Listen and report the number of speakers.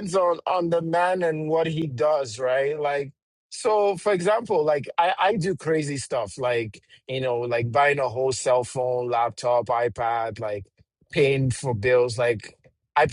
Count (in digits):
1